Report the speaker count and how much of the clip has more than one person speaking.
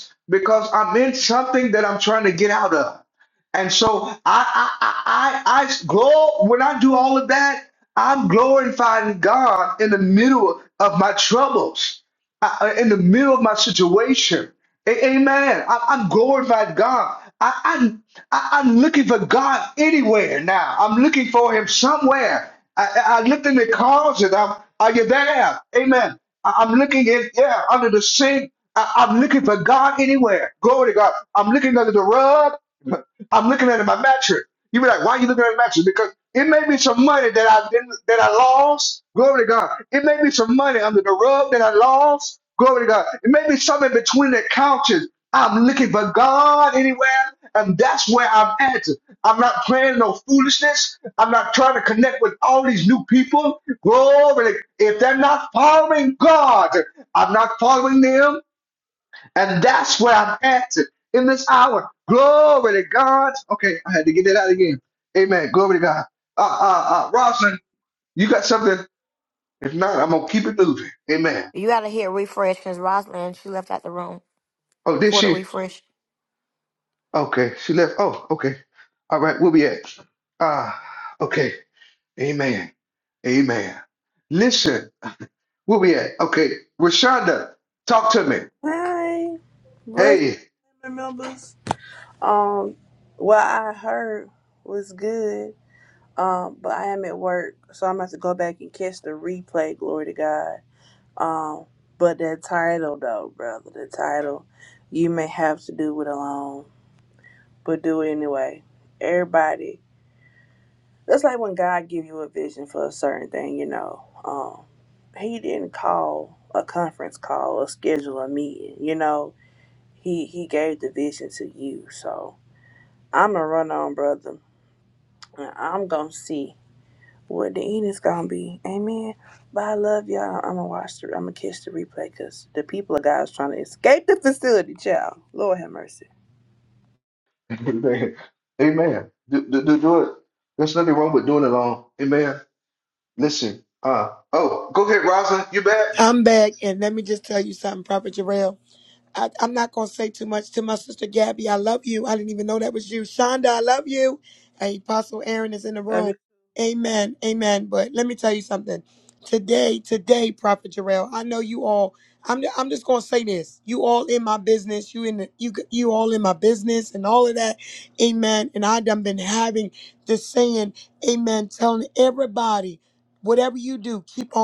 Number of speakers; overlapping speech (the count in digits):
4, under 1%